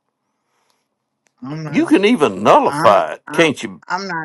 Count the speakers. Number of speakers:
two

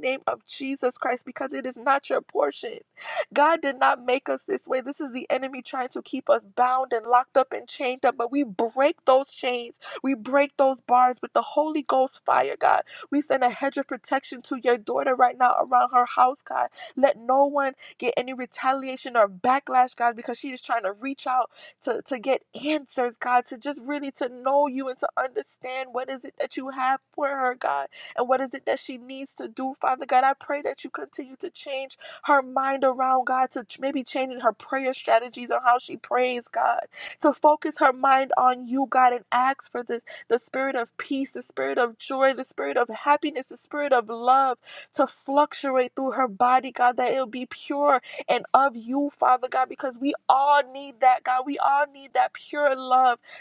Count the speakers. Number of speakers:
one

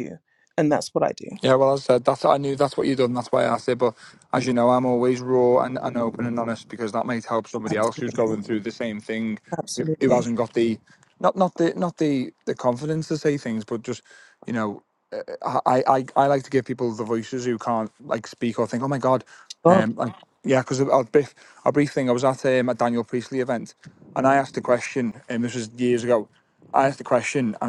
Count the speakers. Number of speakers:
two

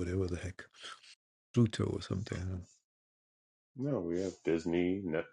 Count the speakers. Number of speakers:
two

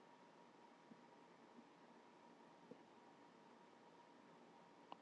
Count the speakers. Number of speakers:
zero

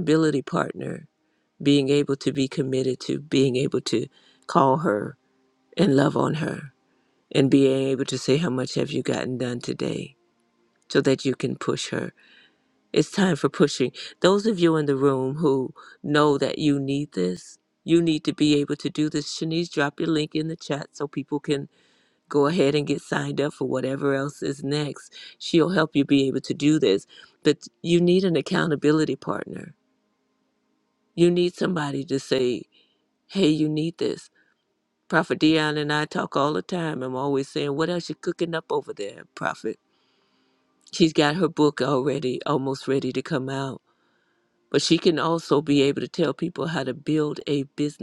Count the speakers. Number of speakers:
one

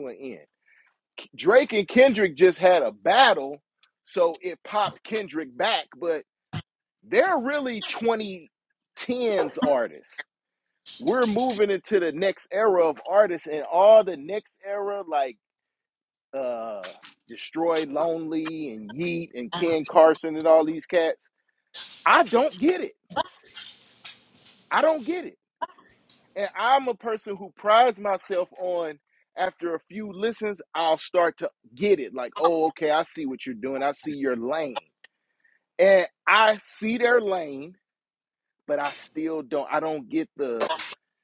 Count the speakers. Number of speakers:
one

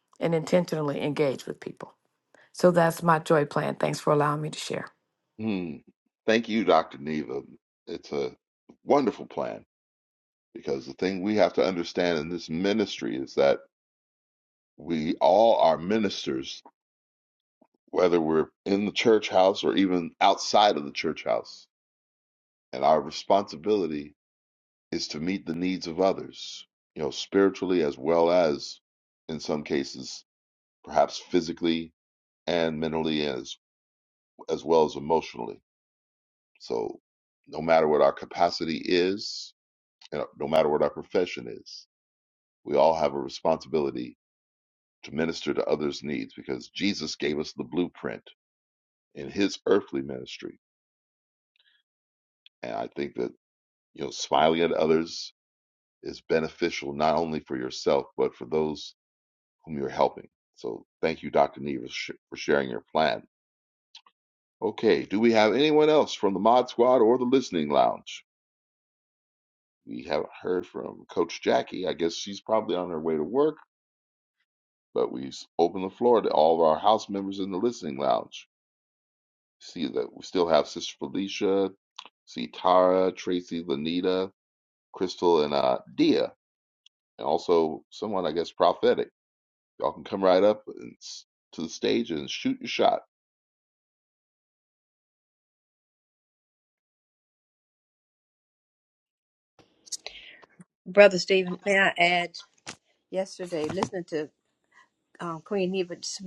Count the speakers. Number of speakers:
three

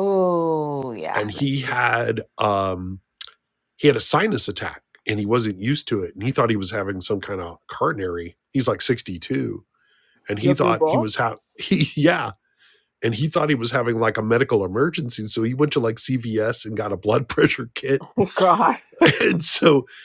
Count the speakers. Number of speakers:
three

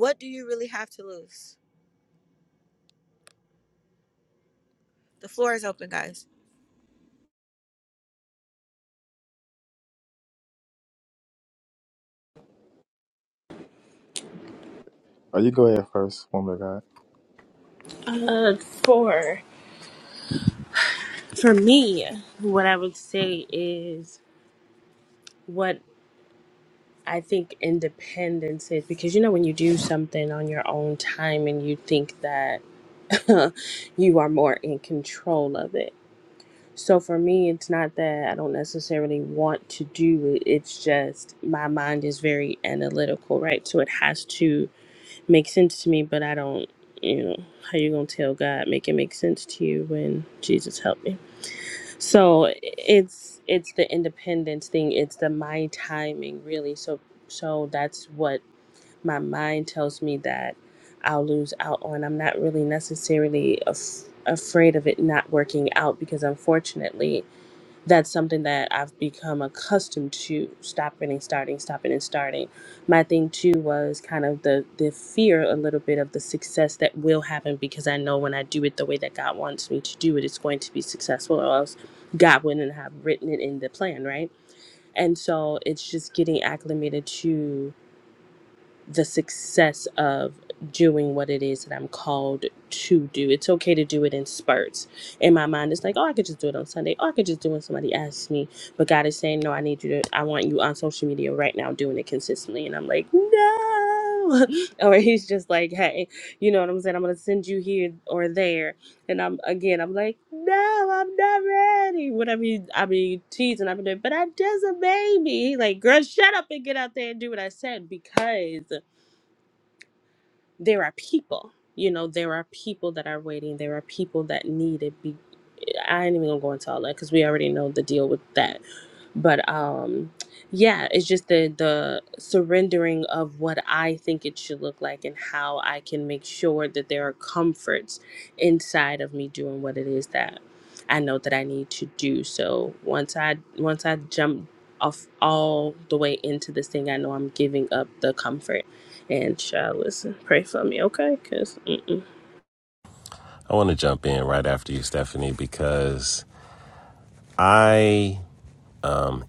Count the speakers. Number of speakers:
four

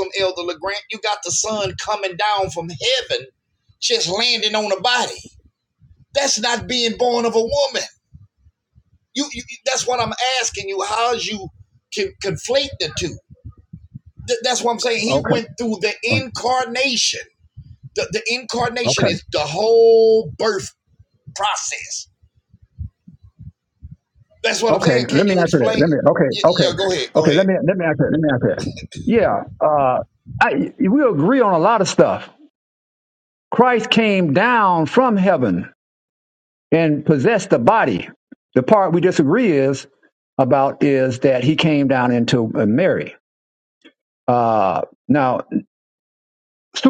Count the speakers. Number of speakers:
two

